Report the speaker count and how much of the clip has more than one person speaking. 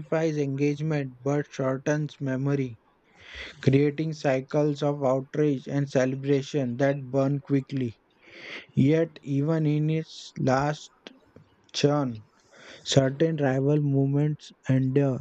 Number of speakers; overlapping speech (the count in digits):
1, no overlap